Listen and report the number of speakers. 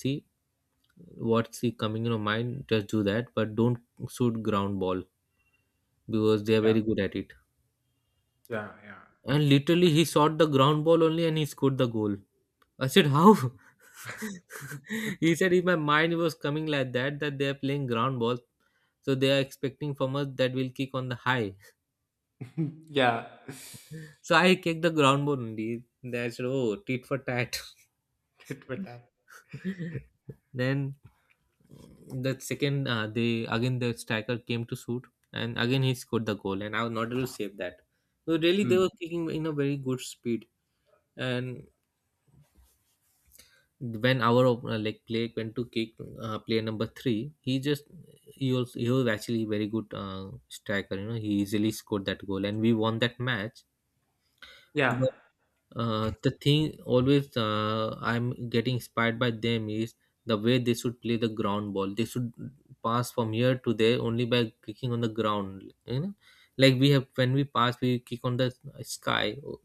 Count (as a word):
two